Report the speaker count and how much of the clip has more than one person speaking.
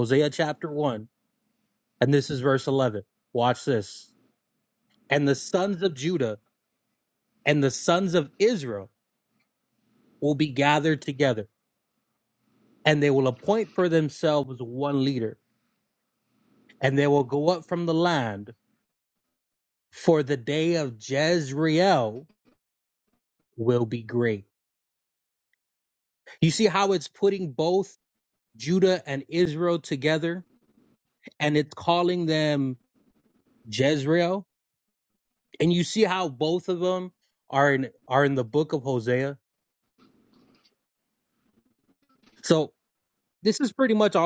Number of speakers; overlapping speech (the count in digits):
1, no overlap